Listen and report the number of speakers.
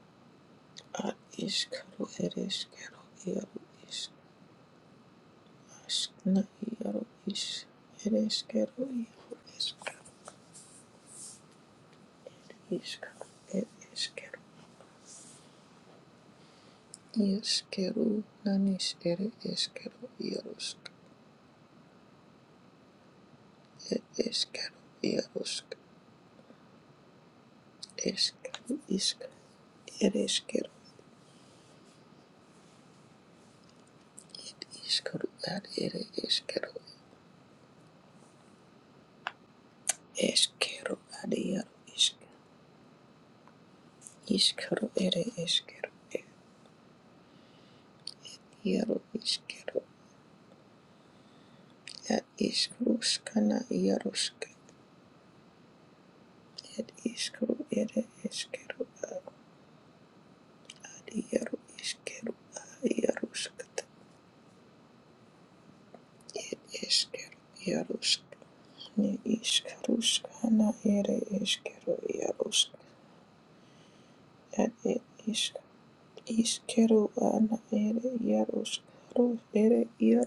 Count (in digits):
1